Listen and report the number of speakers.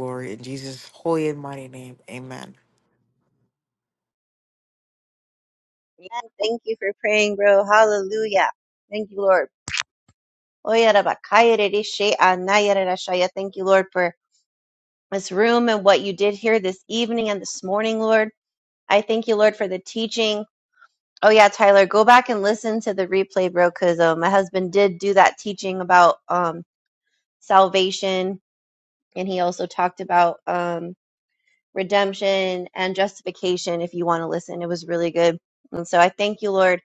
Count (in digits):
2